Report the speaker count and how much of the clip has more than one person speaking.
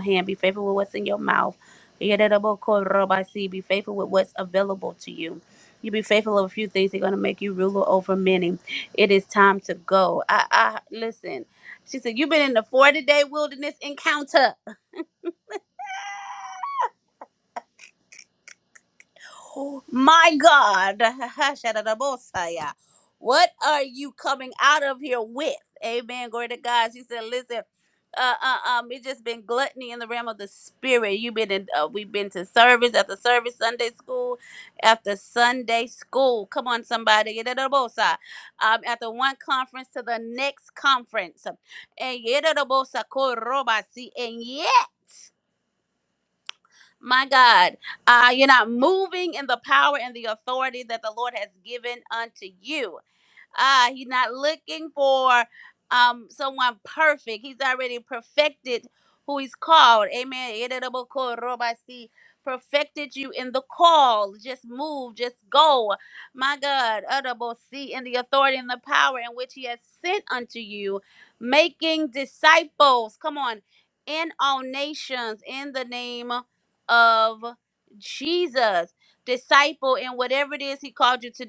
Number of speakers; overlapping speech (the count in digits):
1, no overlap